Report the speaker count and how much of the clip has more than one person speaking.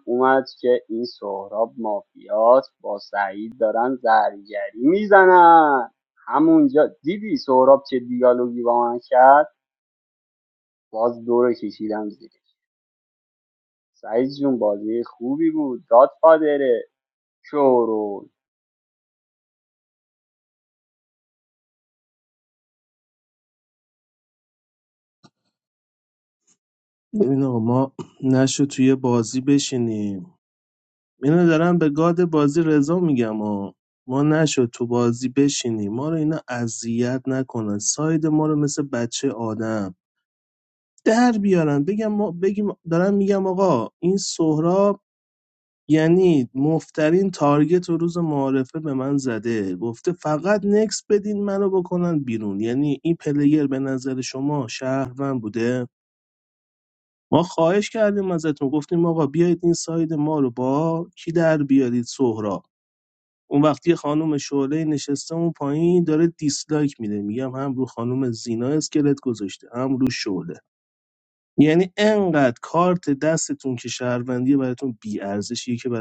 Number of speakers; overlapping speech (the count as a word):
two, no overlap